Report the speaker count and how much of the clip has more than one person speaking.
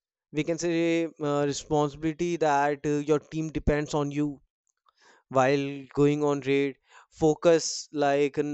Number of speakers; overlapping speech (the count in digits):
1, no overlap